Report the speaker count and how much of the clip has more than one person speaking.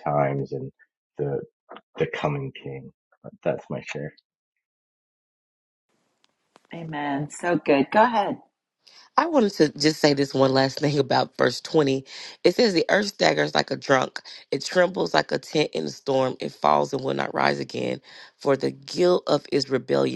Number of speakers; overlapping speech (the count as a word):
three, no overlap